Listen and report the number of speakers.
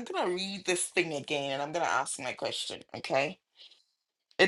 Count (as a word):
one